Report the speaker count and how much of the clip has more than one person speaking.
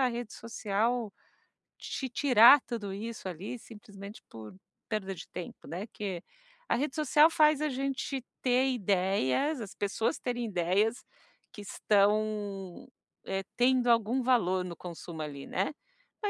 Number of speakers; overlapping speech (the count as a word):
one, no overlap